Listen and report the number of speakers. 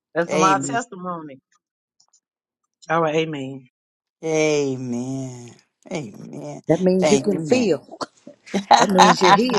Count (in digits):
3